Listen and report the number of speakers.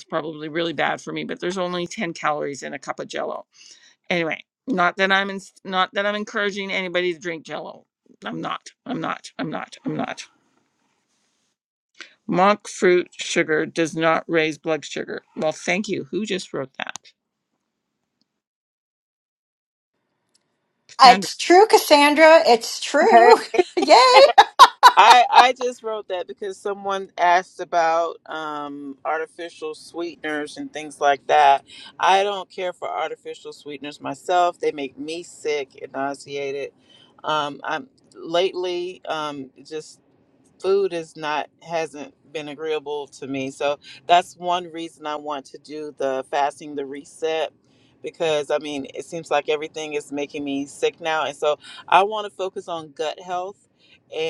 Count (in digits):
3